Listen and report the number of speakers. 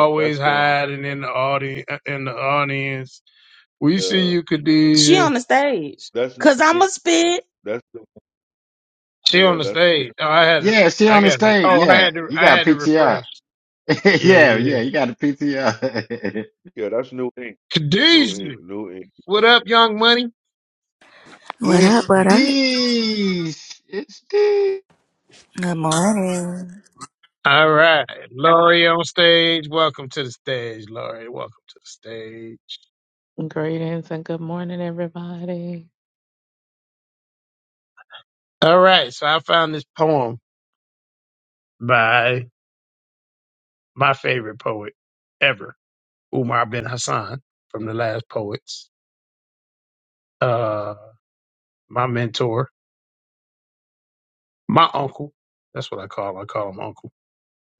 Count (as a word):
six